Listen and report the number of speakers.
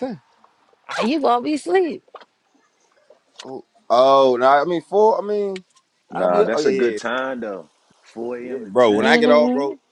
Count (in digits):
3